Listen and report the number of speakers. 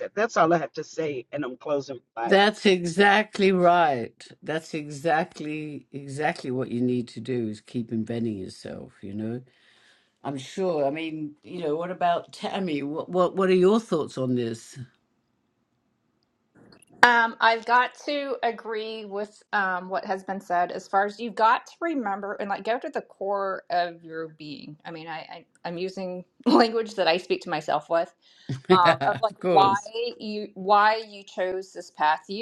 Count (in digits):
3